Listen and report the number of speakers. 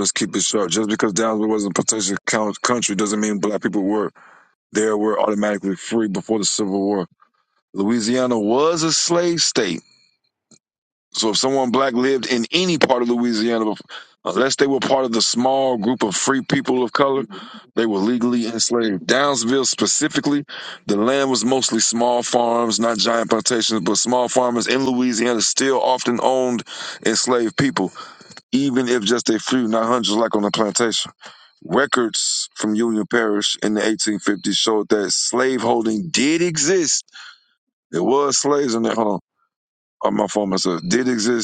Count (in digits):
1